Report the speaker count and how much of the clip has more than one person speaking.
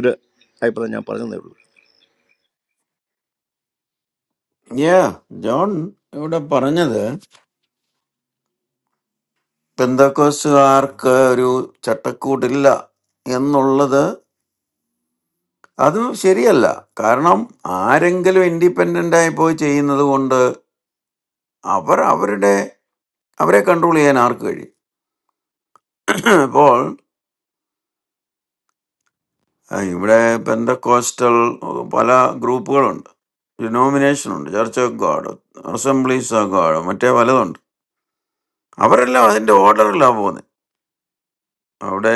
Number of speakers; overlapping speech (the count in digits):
2, no overlap